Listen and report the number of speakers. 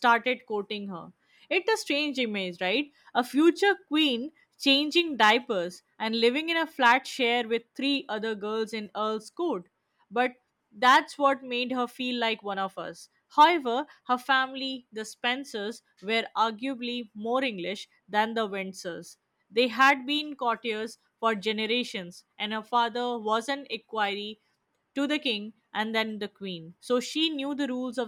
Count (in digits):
1